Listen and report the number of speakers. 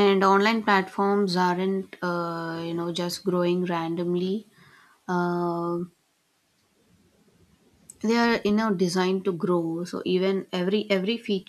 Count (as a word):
one